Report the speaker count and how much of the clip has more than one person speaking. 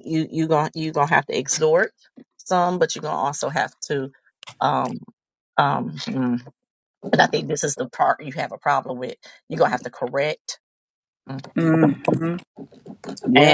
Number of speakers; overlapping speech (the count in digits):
2, about 1%